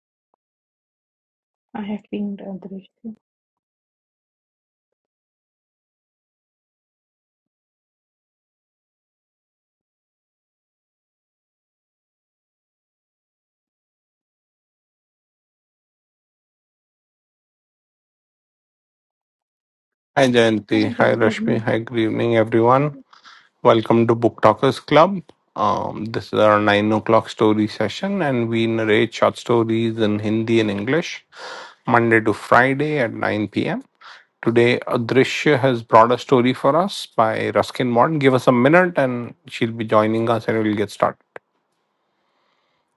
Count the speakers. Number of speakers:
2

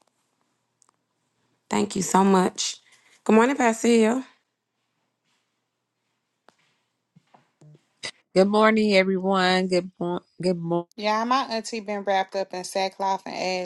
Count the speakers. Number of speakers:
3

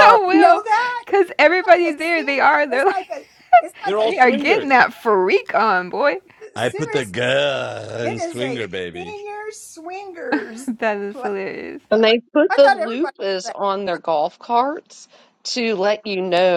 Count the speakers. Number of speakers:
4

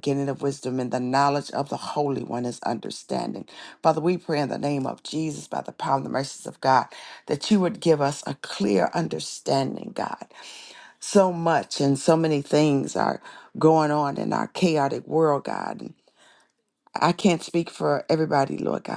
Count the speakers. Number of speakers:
1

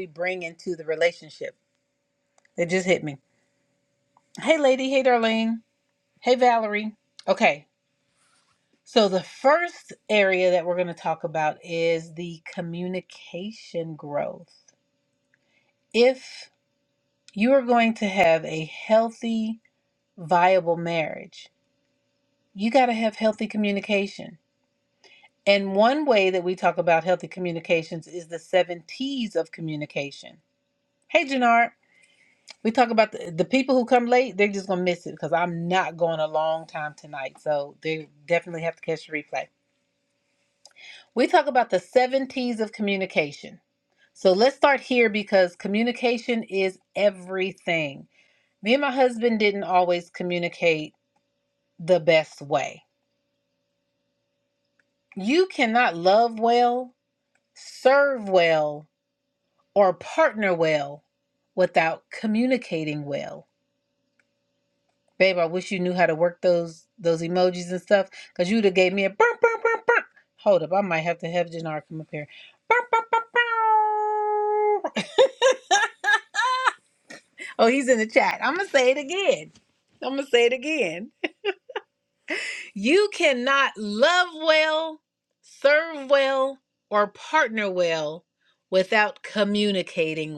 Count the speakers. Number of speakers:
1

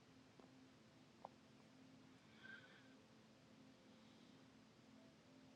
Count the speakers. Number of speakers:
0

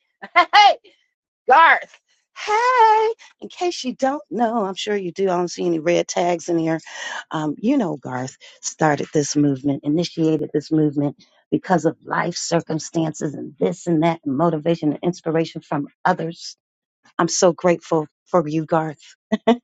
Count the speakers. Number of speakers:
1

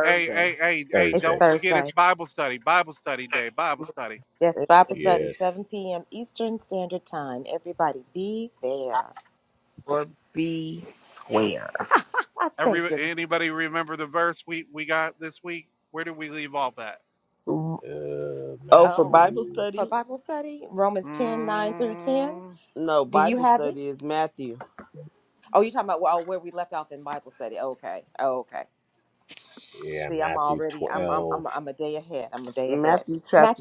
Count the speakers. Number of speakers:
4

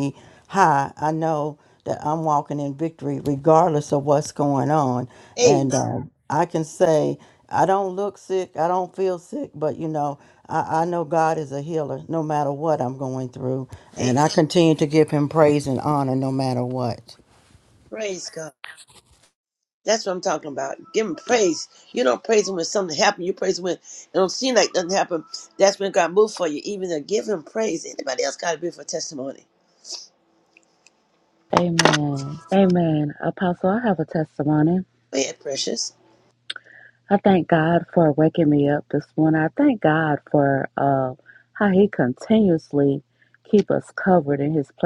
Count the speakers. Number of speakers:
3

